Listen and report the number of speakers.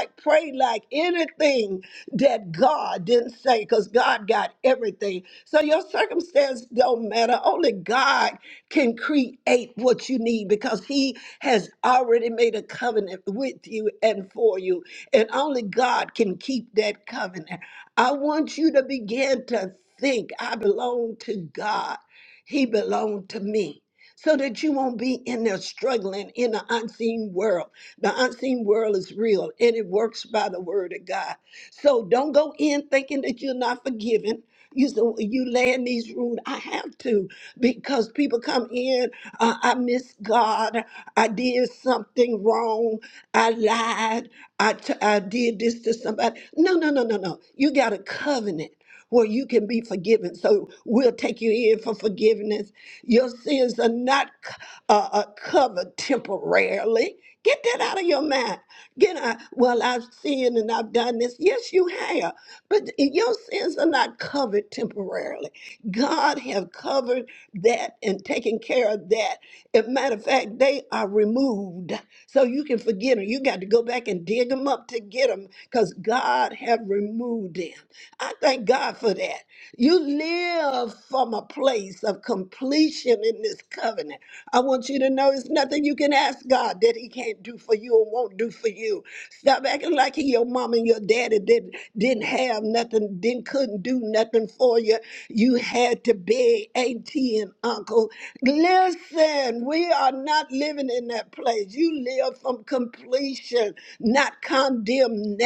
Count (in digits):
1